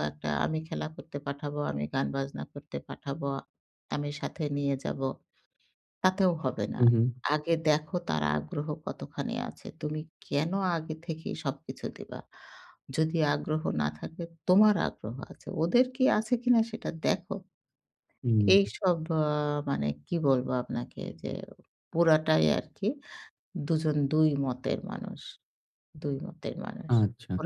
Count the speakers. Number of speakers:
2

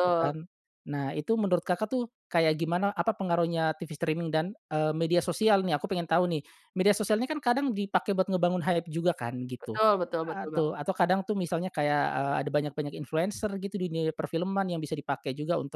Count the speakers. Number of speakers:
2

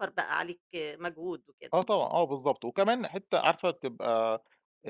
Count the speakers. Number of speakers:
2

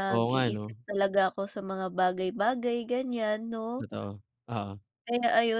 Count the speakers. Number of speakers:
2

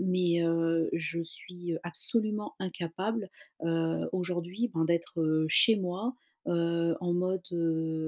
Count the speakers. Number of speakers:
1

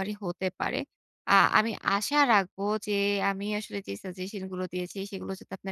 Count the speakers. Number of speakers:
1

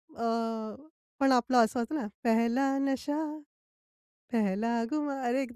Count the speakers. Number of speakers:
1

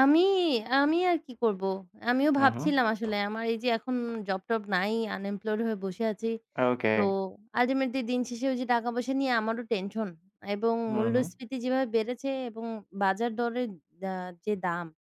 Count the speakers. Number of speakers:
2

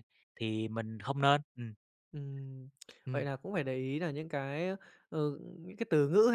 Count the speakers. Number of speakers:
2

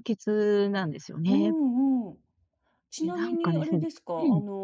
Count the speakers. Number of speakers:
2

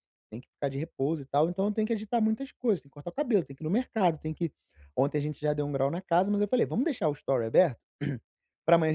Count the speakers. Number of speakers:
1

